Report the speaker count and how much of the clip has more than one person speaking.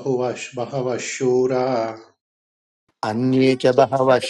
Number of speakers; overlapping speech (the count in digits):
2, no overlap